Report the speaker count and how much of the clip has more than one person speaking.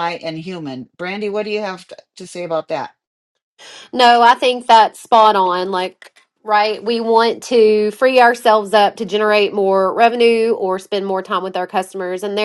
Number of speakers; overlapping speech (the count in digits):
2, no overlap